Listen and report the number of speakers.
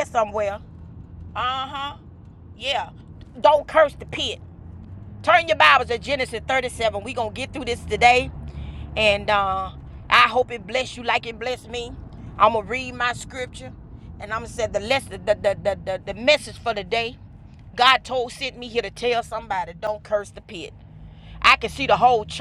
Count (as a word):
one